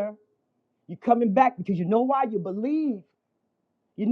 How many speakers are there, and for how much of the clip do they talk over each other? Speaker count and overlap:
one, no overlap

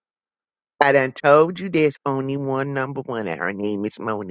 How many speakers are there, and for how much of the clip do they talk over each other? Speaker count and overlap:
one, no overlap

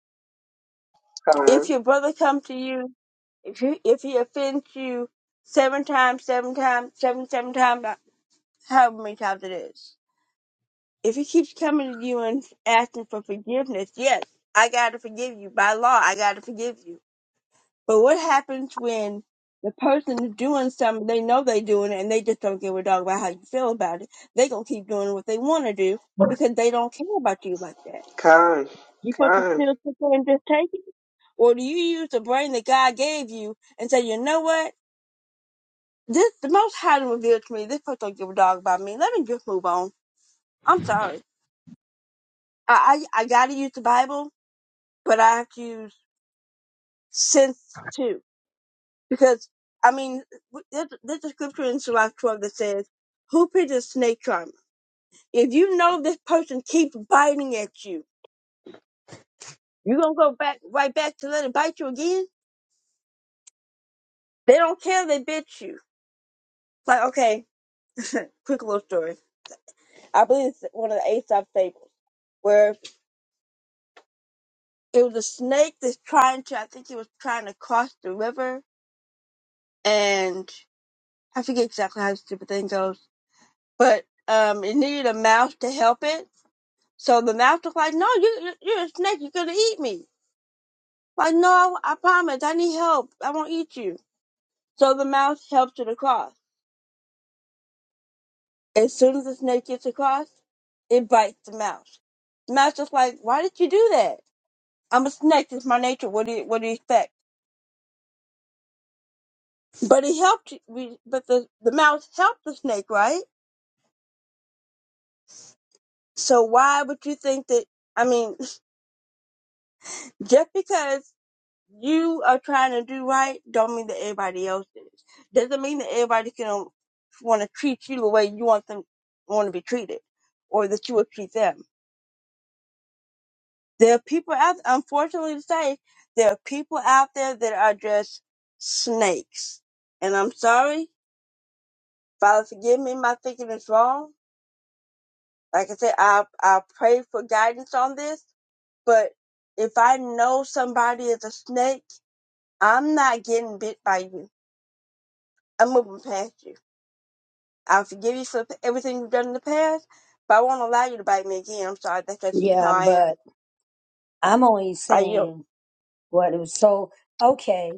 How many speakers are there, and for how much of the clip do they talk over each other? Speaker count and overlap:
three, about 1%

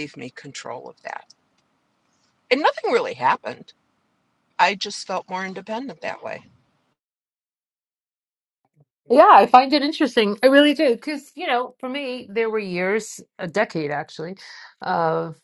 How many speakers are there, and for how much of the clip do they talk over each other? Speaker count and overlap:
two, no overlap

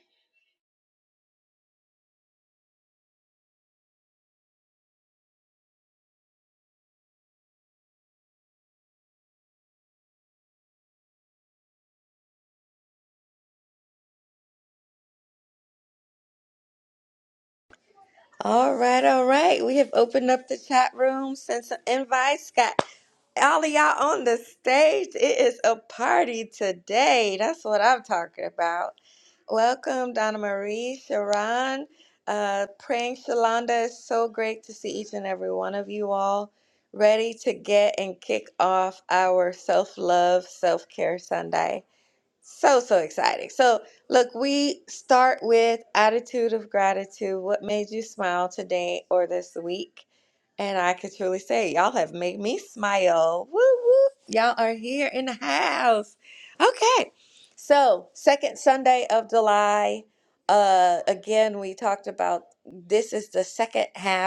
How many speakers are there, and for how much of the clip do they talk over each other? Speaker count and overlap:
one, no overlap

